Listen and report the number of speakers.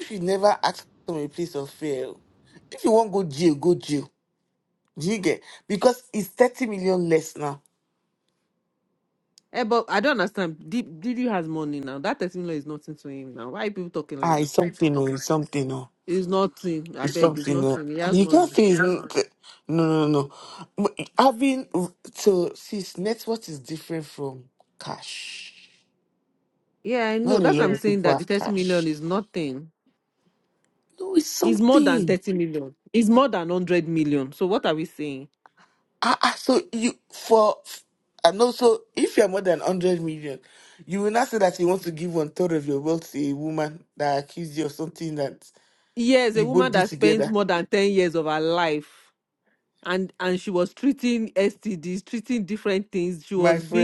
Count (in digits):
2